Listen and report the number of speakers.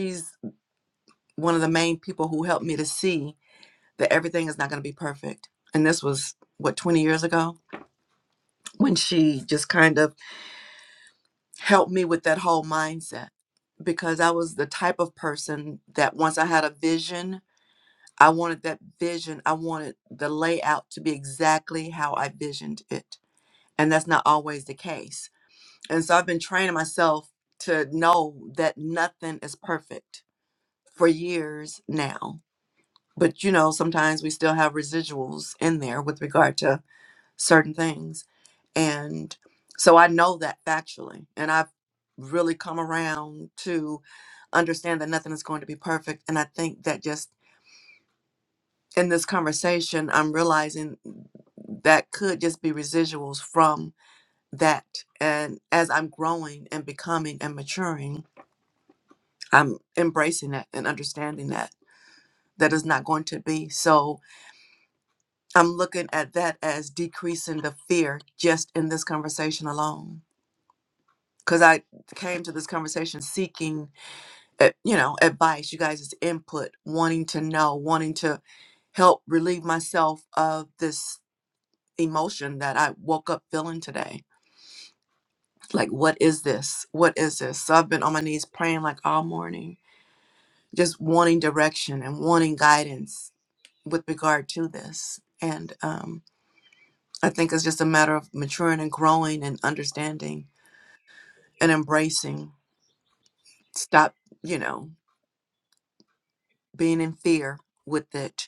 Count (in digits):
1